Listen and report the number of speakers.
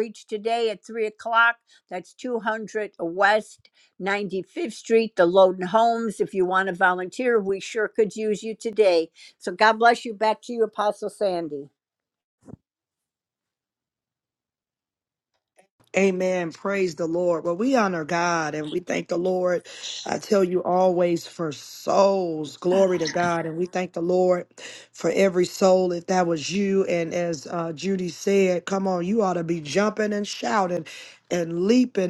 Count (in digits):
2